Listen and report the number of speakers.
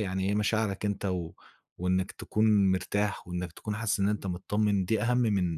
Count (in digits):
1